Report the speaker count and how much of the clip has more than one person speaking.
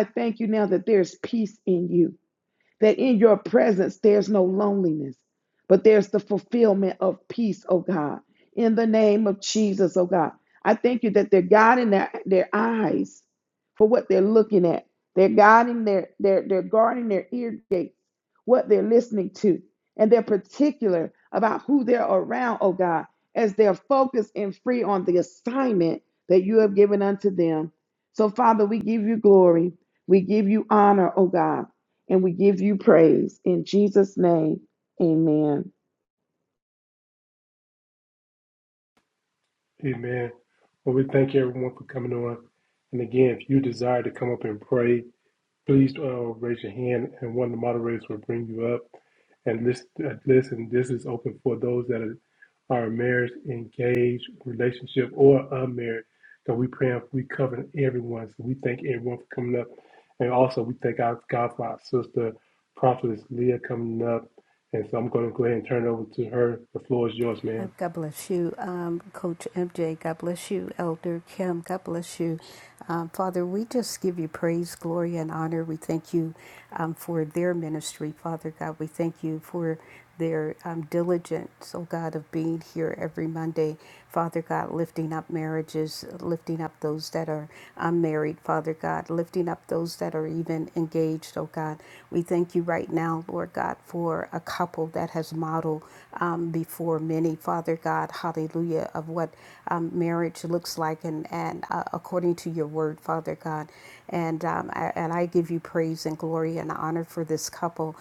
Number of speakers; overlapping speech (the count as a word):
three, under 1%